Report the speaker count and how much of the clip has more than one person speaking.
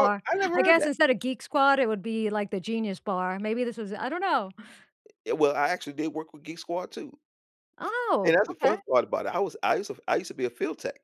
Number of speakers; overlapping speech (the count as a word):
two, about 10%